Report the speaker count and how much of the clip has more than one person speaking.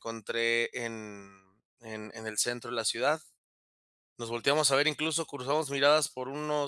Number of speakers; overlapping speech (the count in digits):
1, no overlap